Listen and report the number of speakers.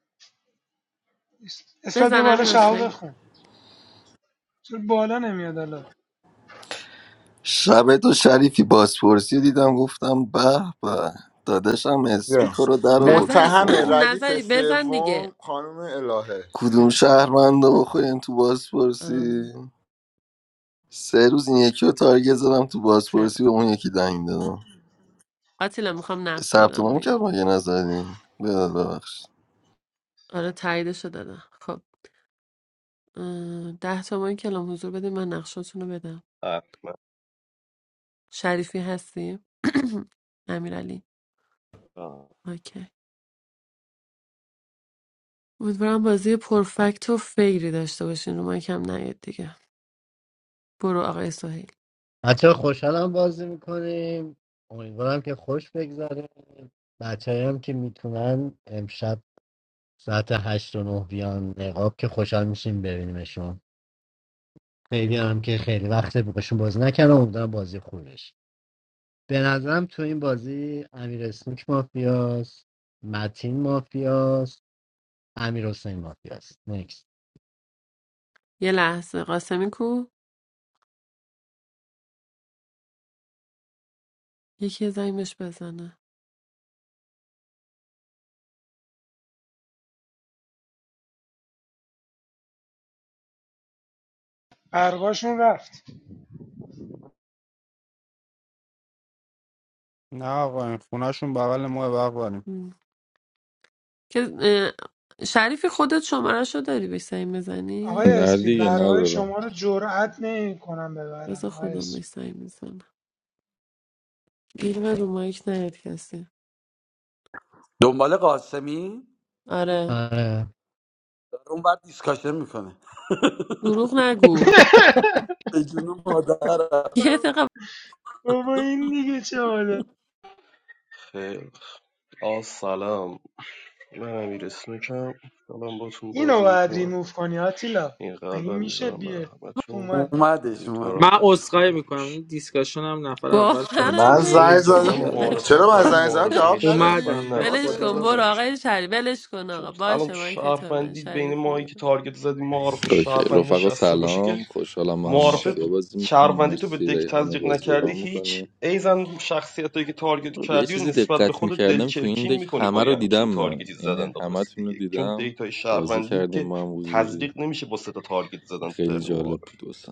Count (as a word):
ten